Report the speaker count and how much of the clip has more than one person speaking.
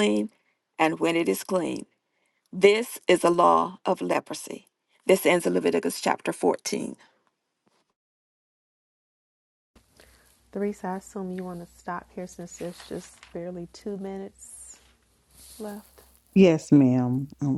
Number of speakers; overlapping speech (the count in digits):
3, no overlap